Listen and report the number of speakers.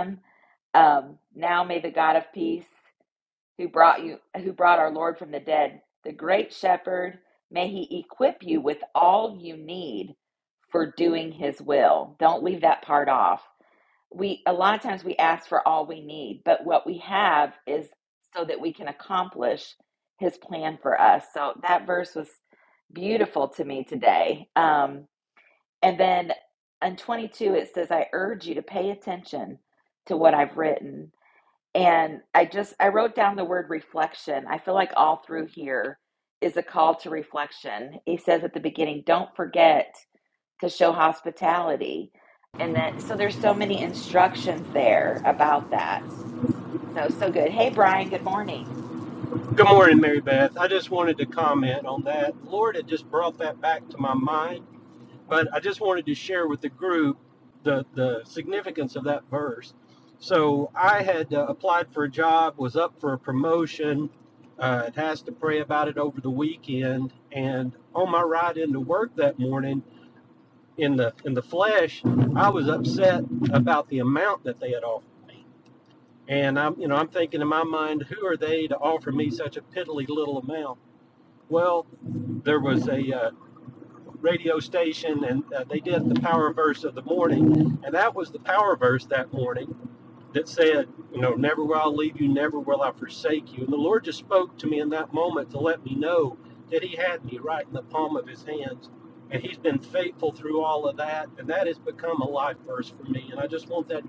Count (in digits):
2